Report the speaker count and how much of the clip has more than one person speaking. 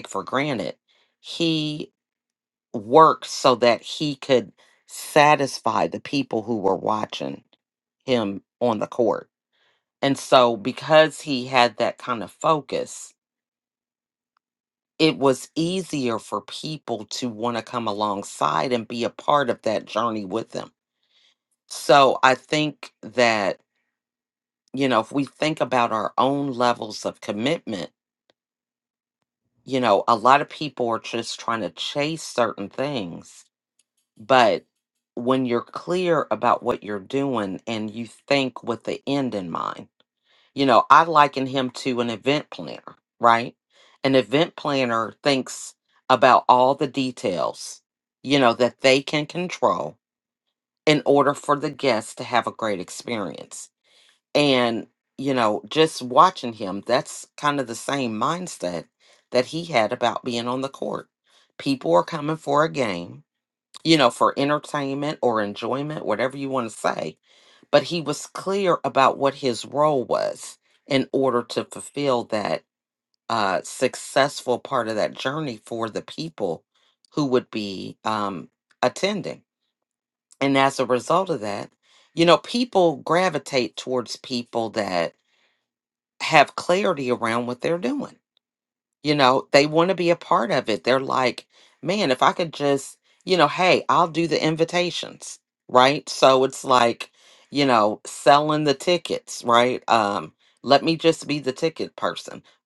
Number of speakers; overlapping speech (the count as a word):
one, no overlap